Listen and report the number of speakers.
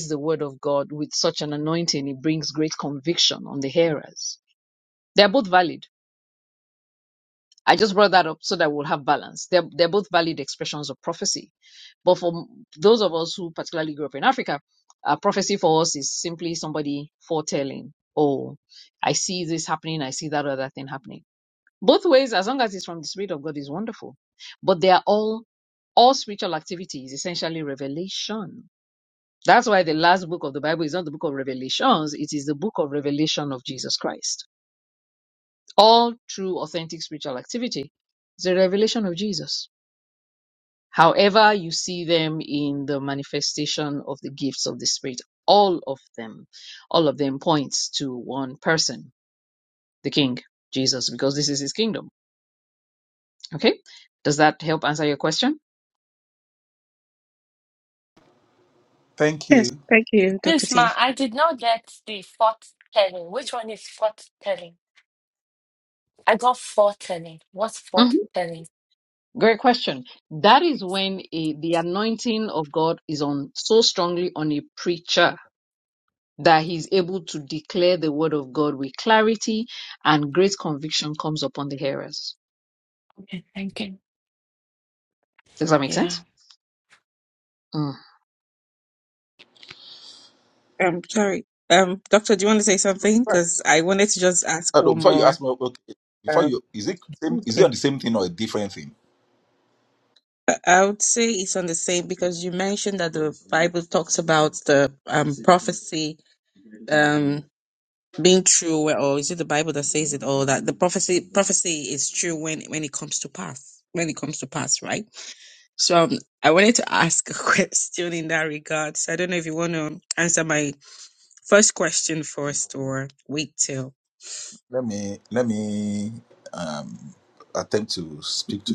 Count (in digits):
4